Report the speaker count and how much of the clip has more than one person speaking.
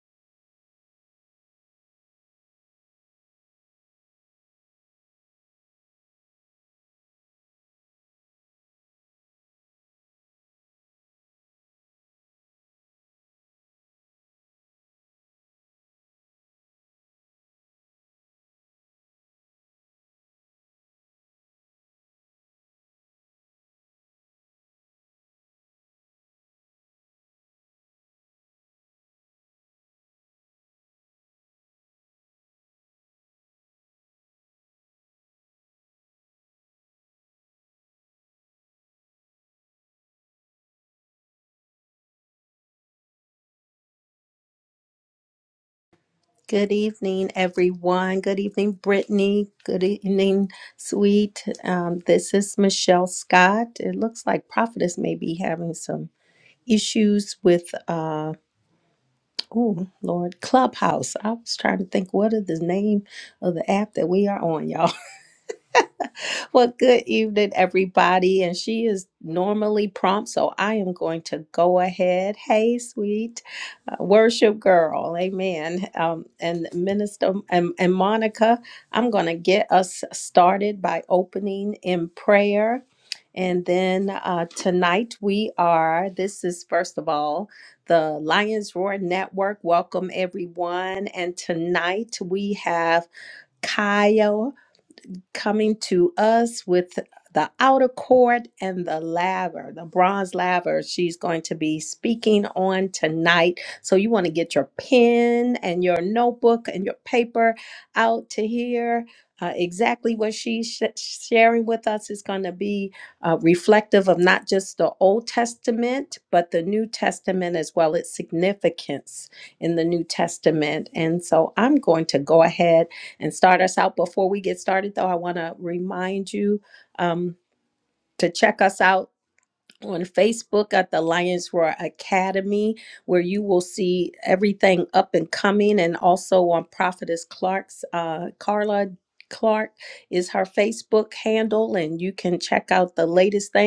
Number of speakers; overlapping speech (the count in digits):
1, no overlap